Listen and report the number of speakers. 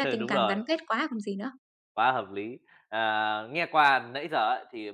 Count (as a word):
two